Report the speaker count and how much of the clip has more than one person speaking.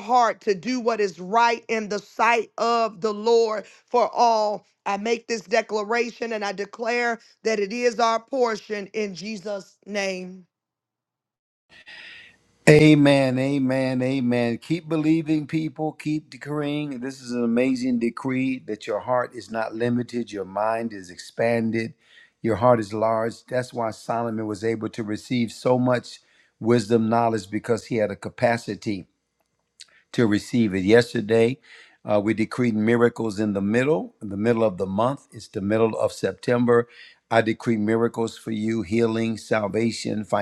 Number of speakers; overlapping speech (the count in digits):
2, no overlap